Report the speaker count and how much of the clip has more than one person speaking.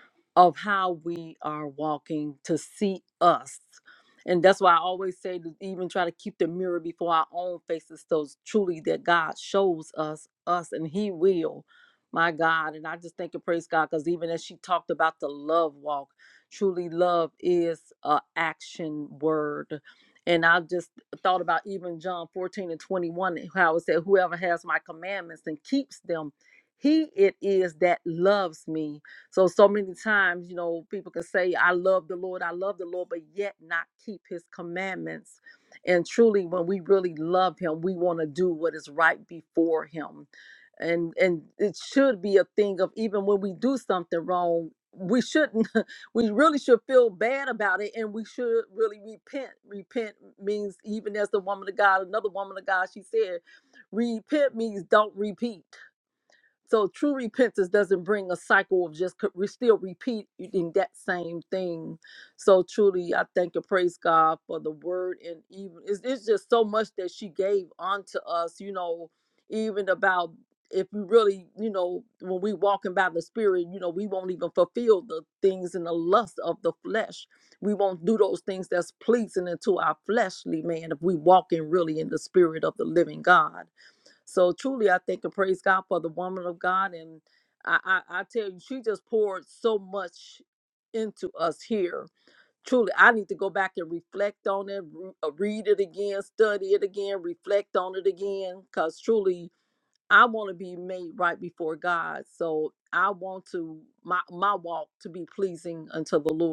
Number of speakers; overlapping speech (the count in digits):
1, no overlap